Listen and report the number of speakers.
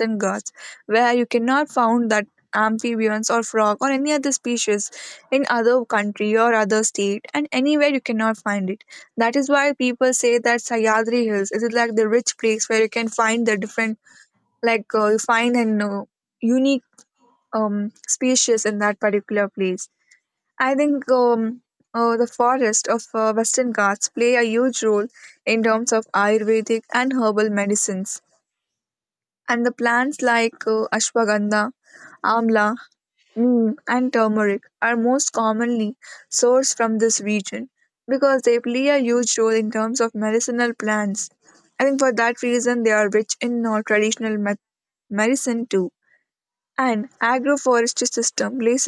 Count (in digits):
1